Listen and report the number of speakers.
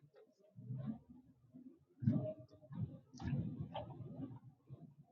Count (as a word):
zero